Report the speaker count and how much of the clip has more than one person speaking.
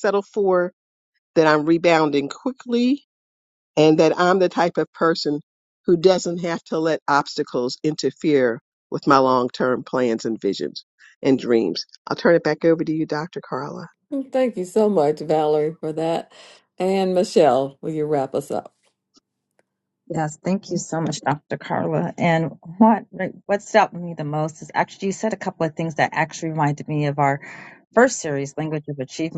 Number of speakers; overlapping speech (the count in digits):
3, no overlap